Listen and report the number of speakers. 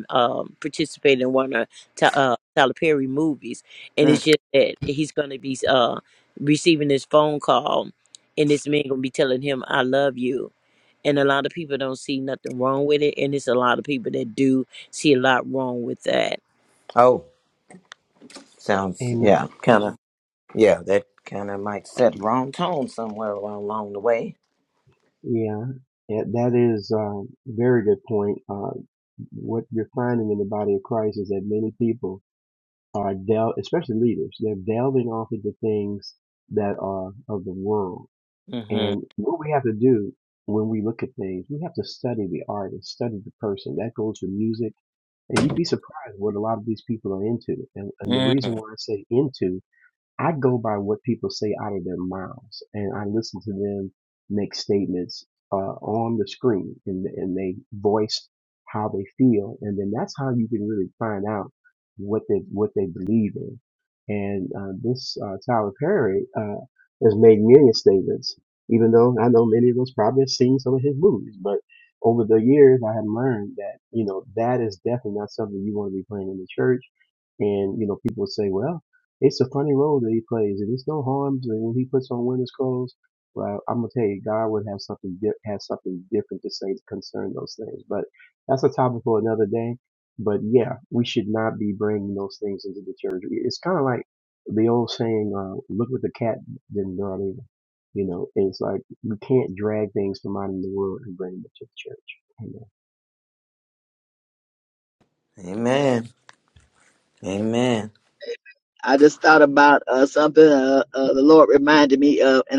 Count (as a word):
four